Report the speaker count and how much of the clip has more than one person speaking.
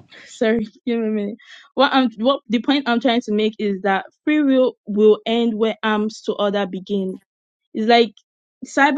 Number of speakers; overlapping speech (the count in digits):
1, no overlap